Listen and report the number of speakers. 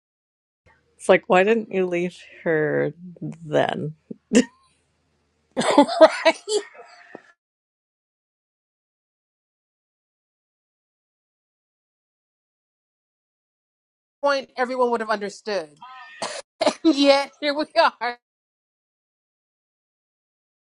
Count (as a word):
two